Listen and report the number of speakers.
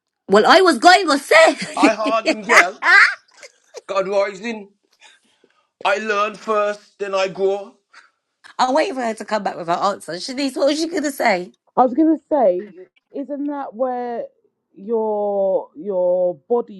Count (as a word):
three